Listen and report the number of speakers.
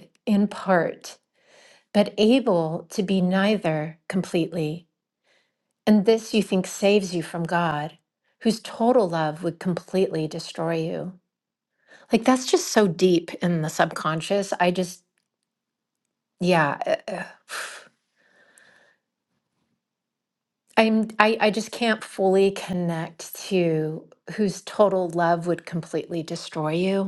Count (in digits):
1